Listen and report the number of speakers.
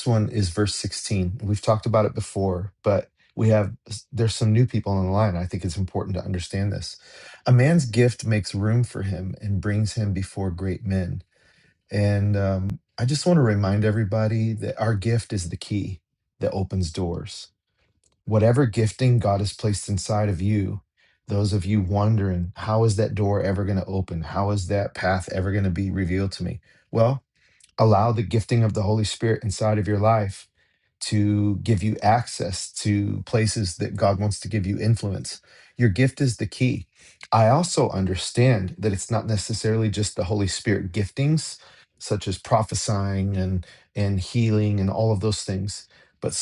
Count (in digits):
1